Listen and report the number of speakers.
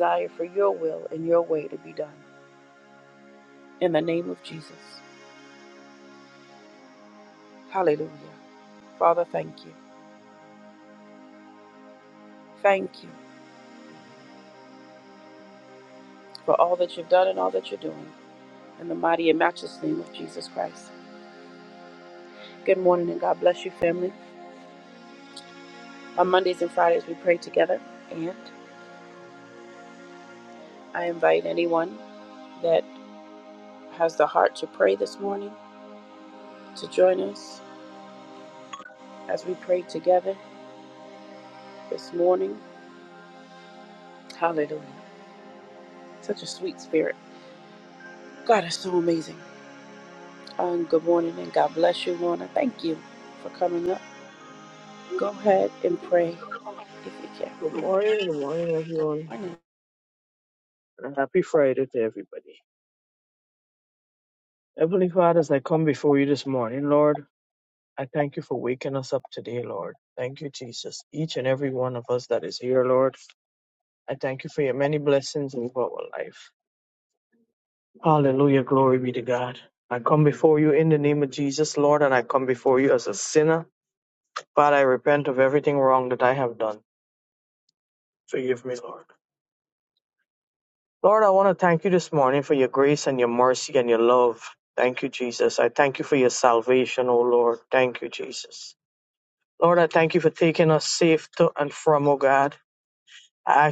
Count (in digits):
2